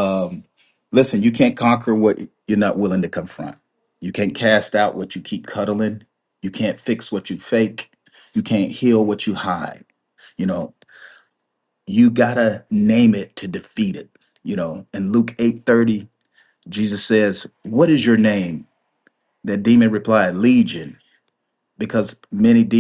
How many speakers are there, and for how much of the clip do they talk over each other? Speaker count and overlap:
1, no overlap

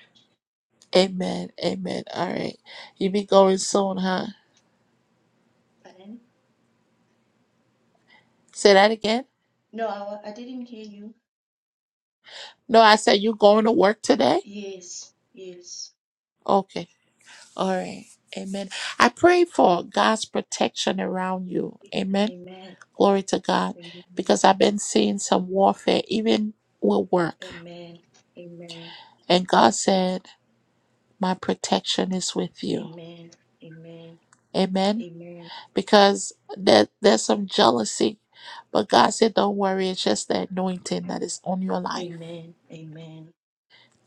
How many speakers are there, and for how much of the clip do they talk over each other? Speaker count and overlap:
2, about 1%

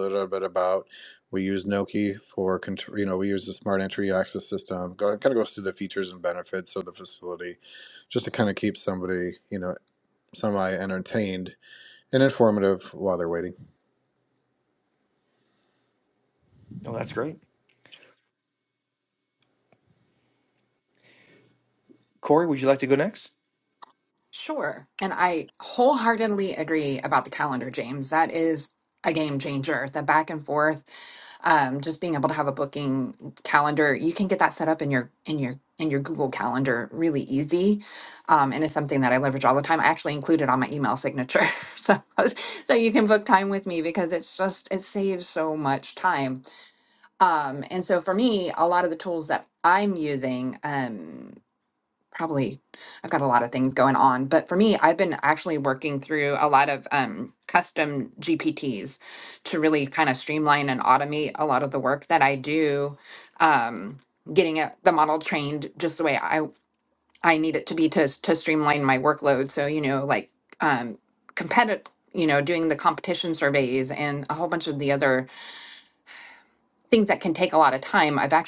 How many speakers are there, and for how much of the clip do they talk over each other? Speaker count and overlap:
3, no overlap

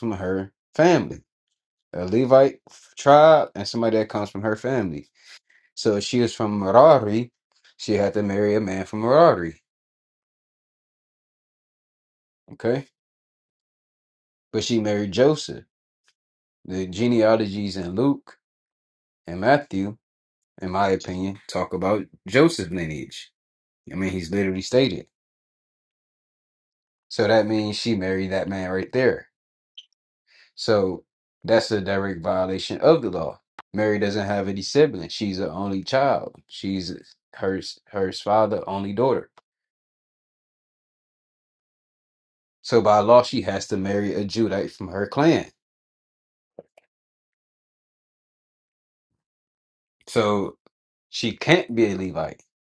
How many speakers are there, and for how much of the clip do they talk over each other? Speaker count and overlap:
1, no overlap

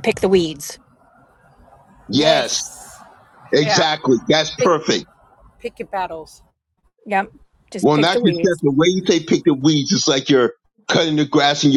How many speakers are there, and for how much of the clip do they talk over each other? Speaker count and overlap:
3, about 14%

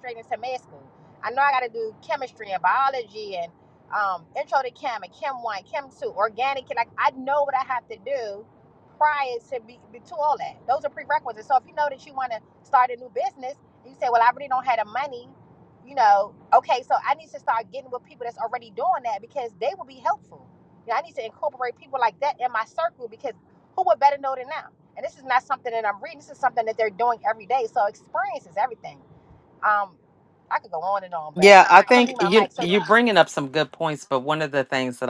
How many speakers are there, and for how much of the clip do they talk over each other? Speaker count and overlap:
2, about 3%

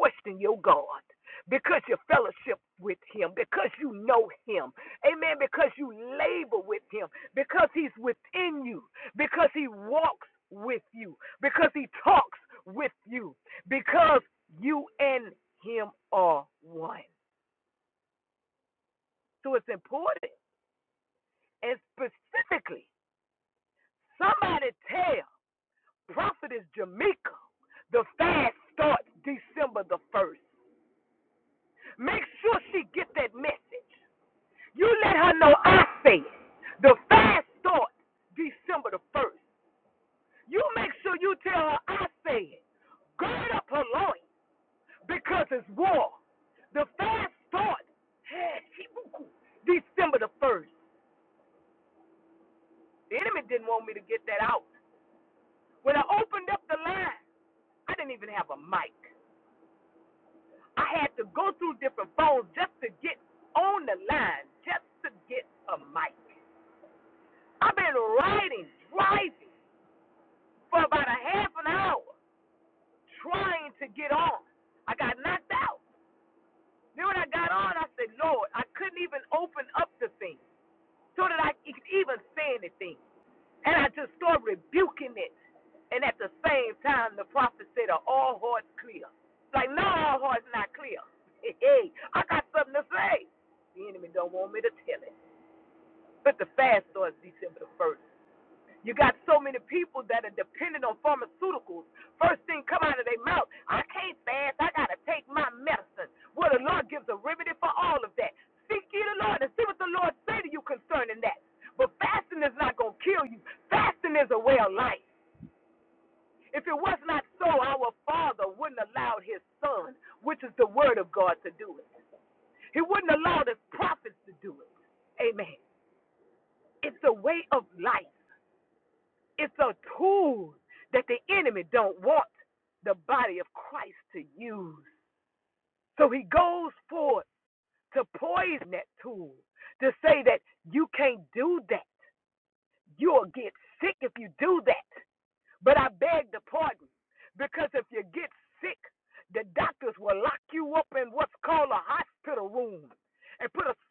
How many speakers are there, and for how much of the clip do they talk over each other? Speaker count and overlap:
1, no overlap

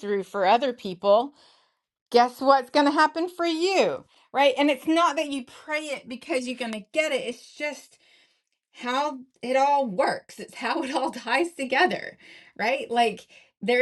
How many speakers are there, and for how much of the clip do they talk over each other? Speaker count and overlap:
1, no overlap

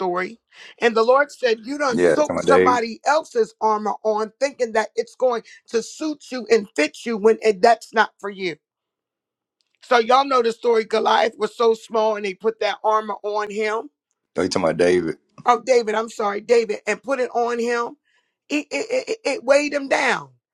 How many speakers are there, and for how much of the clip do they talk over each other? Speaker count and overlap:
2, about 4%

